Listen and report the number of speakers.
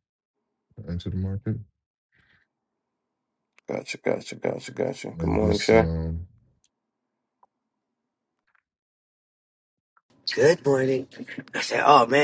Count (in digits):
3